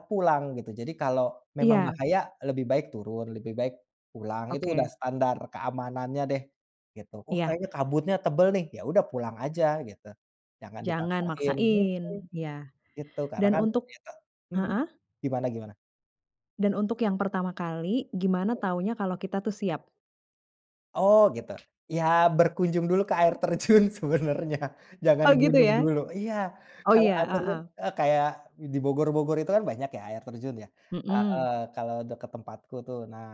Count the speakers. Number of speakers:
two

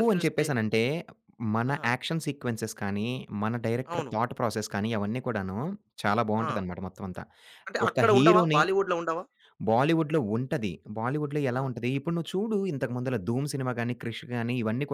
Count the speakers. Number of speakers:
two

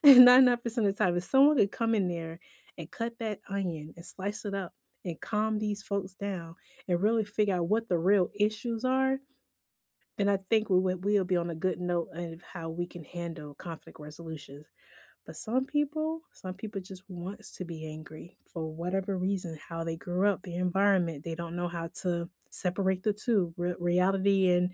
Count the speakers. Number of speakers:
one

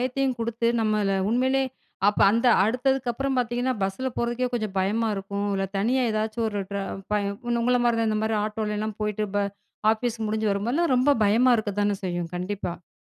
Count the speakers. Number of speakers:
one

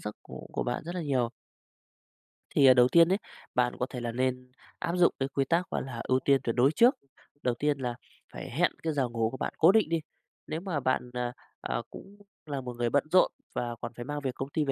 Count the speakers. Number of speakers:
one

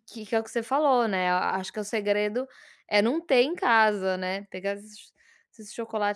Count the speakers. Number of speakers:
one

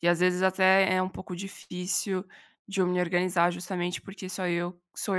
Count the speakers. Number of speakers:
one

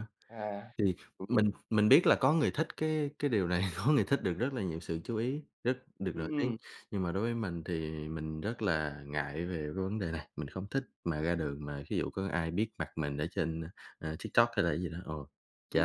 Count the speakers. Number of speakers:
two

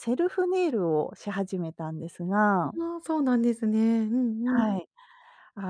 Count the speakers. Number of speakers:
two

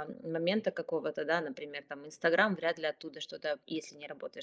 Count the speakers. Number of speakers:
one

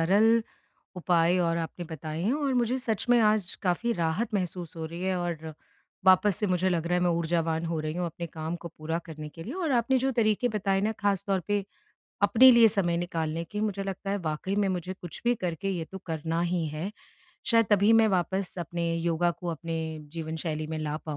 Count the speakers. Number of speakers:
one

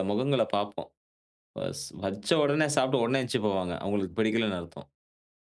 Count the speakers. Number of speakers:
one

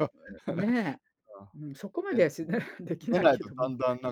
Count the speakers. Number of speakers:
two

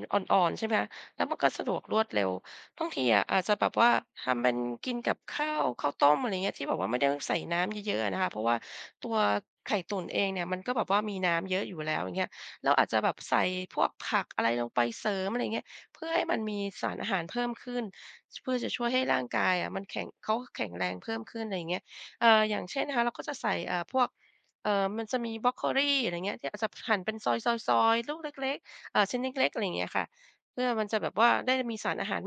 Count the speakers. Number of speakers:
one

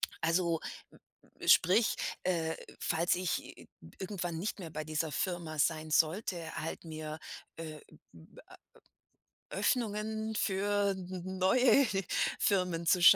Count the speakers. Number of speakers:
one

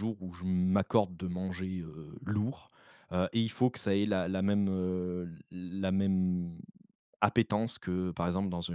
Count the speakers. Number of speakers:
one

